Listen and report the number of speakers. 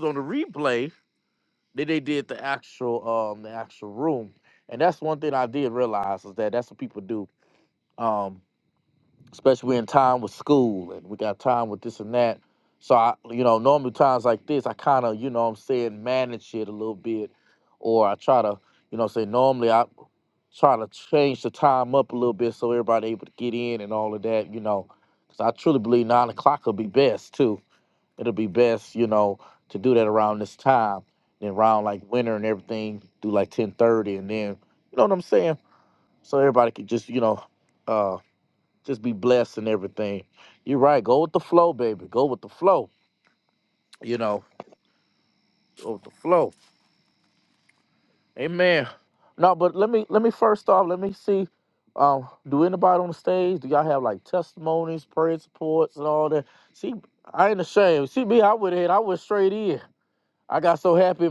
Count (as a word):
one